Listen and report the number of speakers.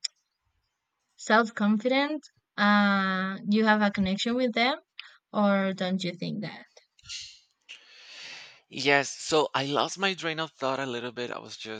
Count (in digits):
2